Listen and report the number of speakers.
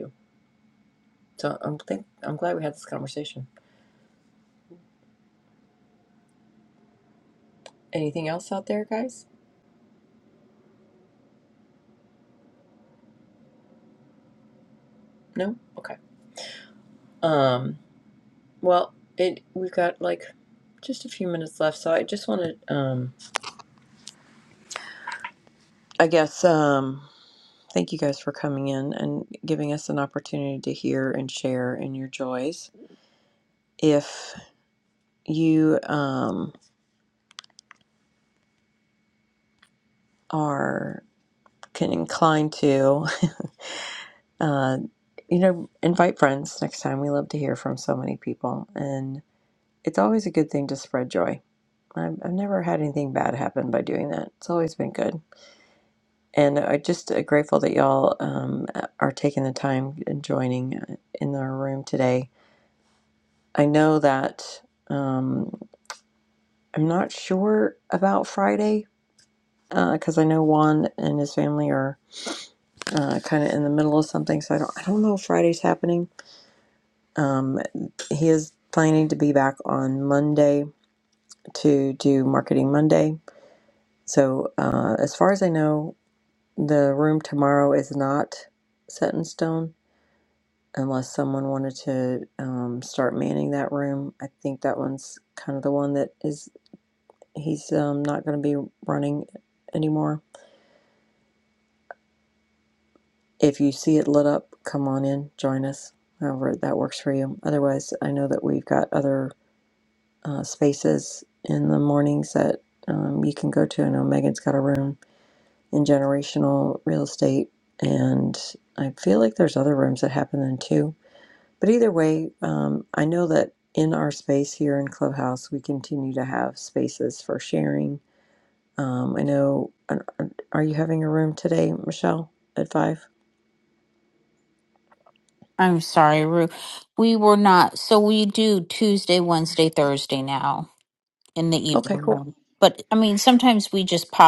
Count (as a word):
two